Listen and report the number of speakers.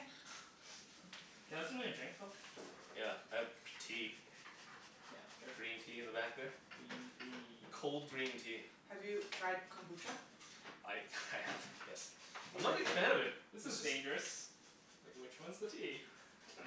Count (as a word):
three